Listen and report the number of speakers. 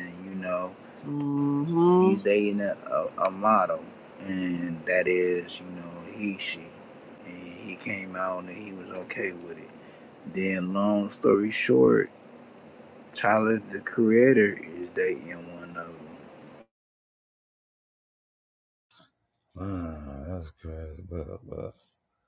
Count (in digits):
3